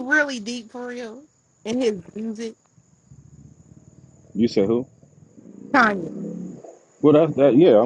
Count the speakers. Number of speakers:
2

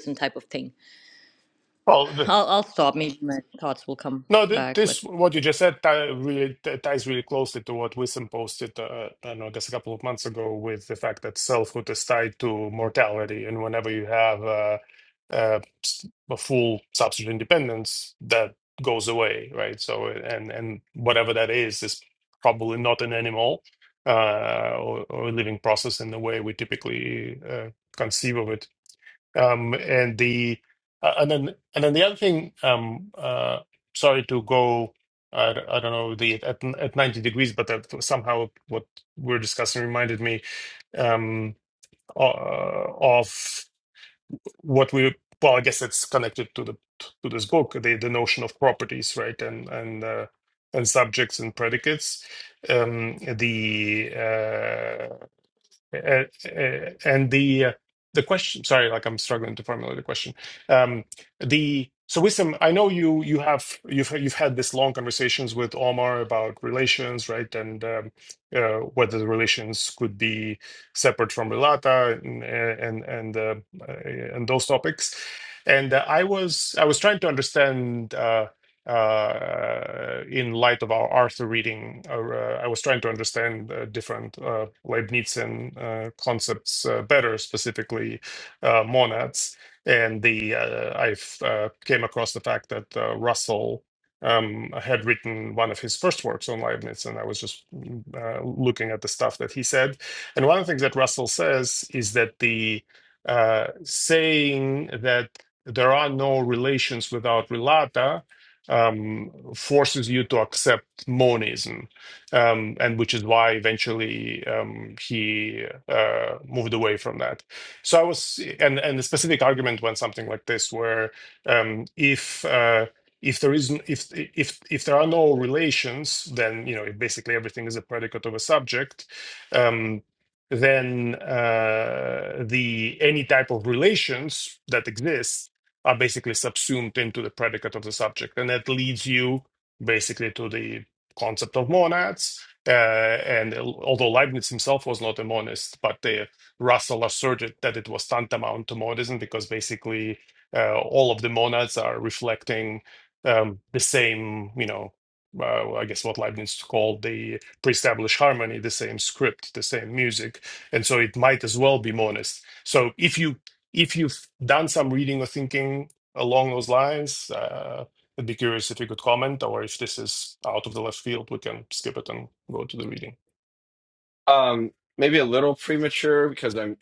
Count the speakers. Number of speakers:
3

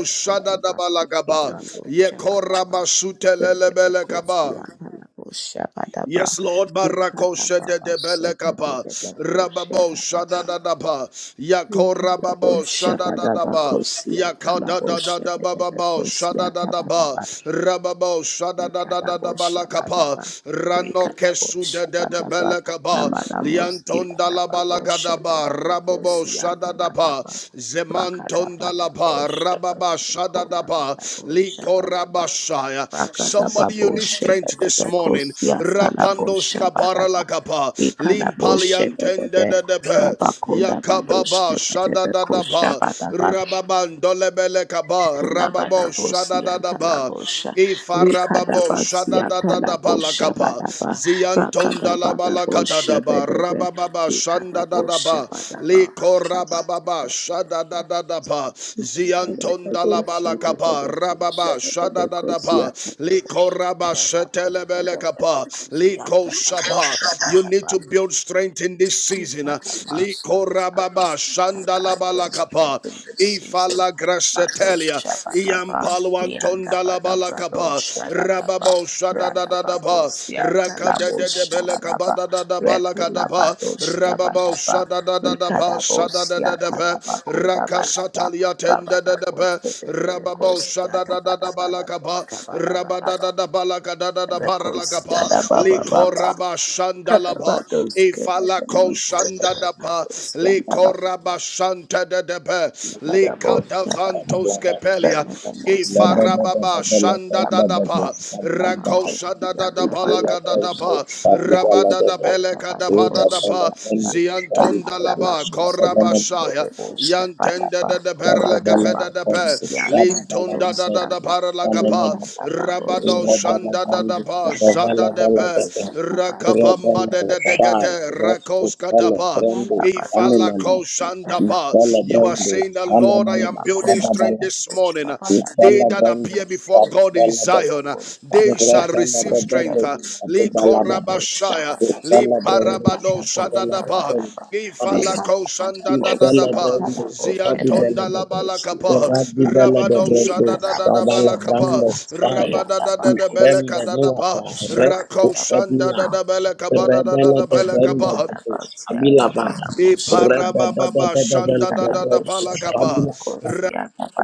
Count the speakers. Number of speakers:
3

